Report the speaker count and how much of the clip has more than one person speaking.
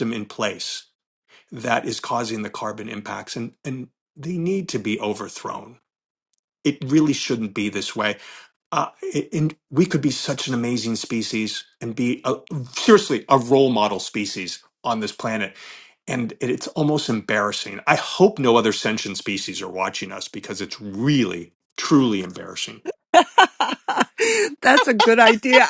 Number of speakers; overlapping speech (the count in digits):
2, no overlap